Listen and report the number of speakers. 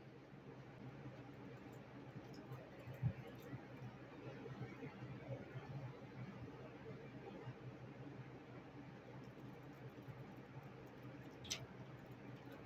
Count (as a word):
zero